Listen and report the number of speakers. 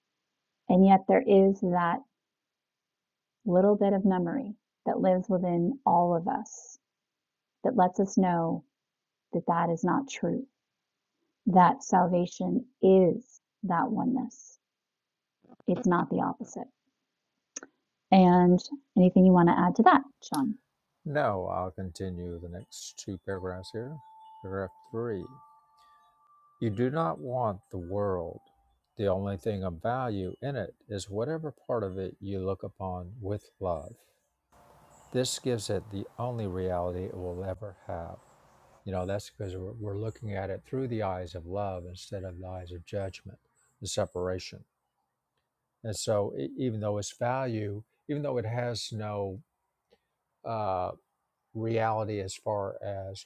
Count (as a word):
two